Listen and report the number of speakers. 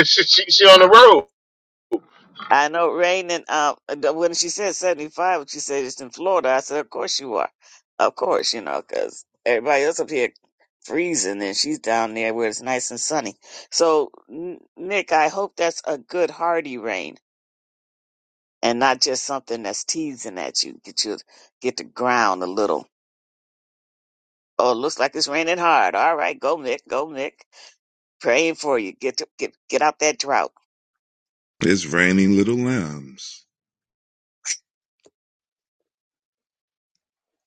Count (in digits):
3